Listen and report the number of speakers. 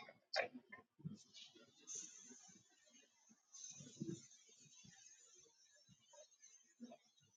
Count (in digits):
0